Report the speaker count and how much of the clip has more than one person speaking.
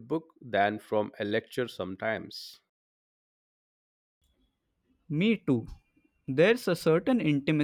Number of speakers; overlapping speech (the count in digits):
2, no overlap